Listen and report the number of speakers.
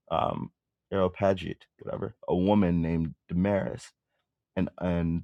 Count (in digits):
1